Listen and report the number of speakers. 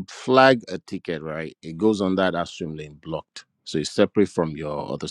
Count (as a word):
one